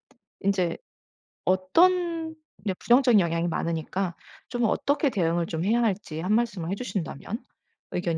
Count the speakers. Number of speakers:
one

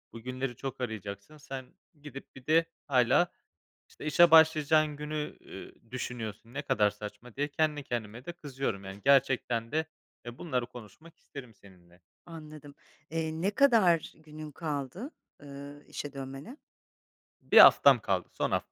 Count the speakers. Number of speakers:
two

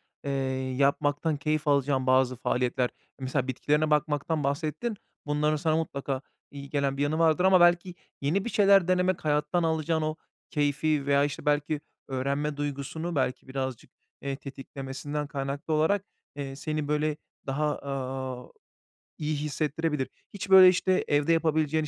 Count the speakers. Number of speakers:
one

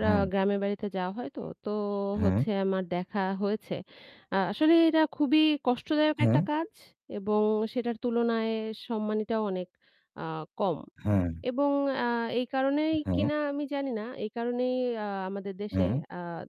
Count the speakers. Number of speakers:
two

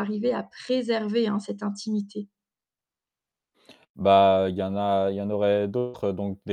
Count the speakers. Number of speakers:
two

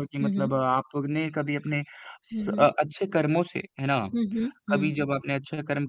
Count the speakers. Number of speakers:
two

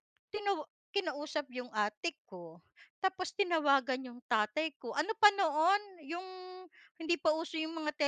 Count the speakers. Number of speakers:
one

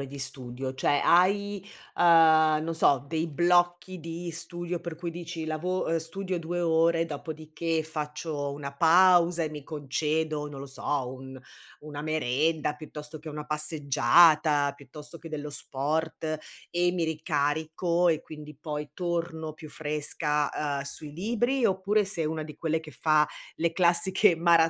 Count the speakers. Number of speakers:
one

